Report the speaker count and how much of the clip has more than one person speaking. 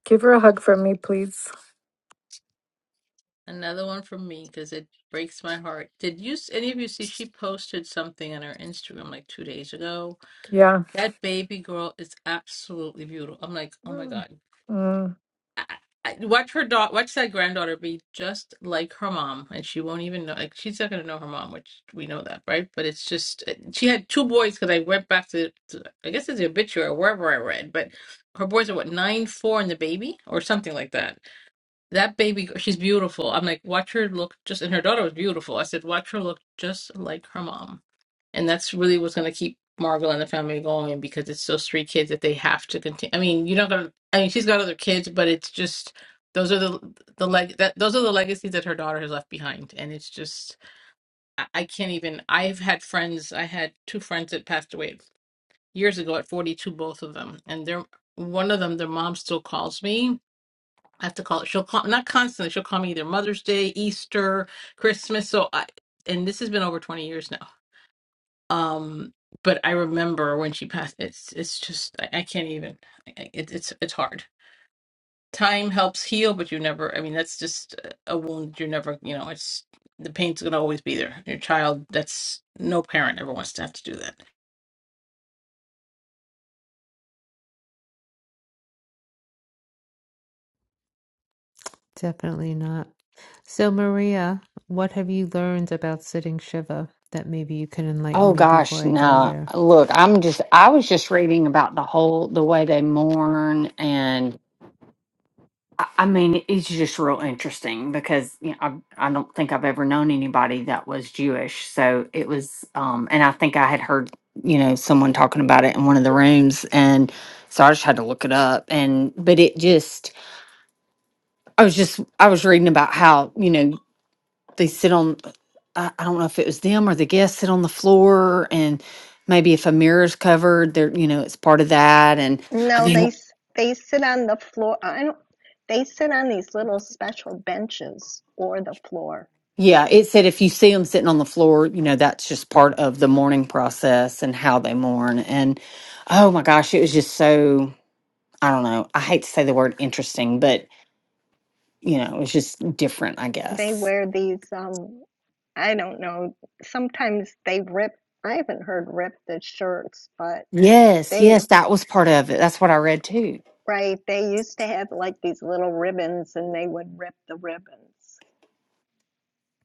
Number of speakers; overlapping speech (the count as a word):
five, about 1%